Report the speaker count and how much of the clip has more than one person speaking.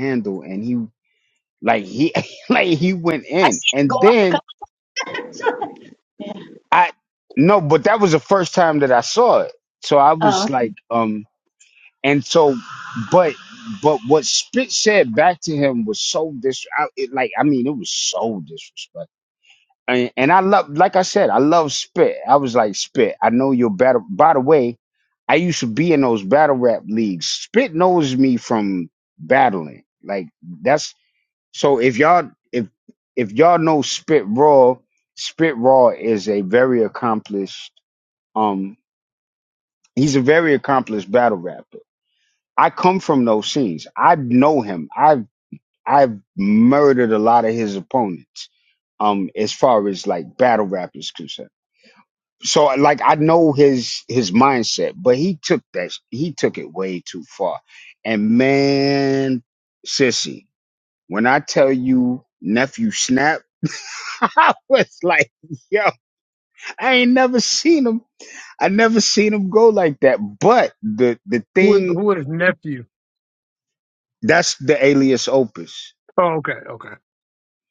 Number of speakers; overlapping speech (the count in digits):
3, about 2%